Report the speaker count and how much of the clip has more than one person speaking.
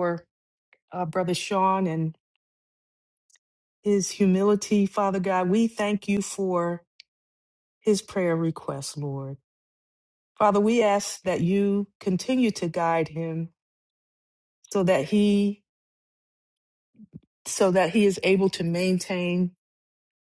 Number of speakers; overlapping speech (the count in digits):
1, no overlap